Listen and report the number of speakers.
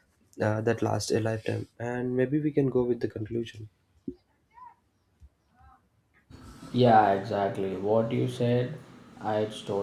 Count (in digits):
2